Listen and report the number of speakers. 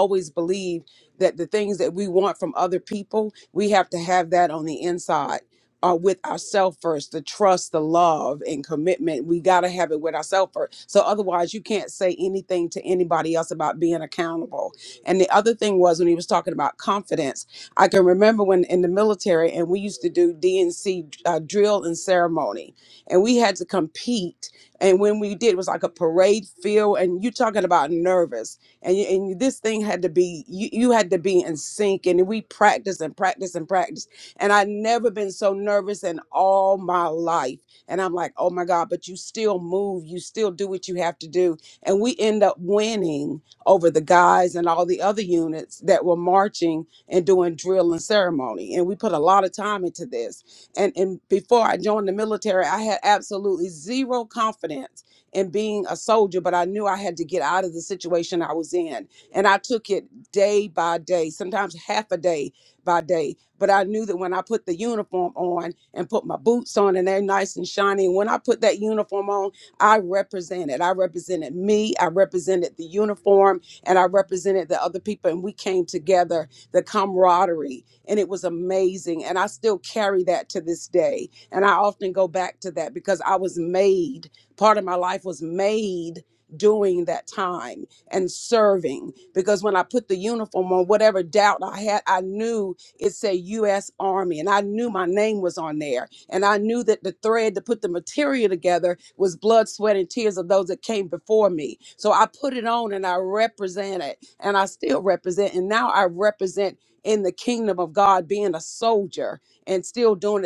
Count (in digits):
1